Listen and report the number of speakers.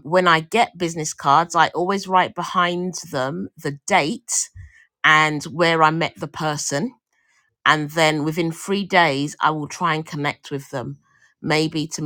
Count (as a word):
one